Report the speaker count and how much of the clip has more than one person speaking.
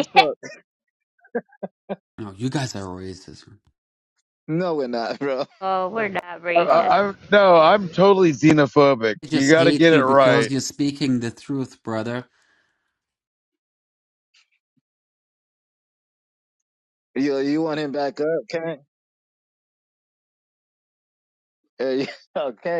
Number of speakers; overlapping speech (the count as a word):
four, about 8%